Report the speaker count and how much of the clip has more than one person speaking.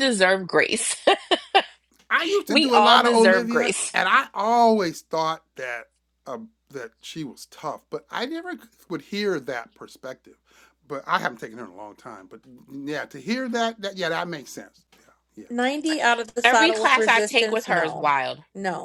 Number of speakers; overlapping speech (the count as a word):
three, about 16%